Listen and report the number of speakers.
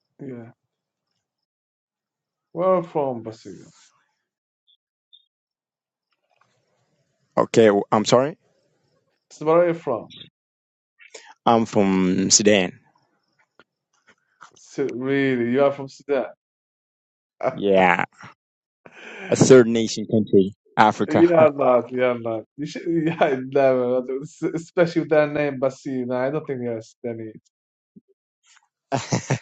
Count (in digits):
2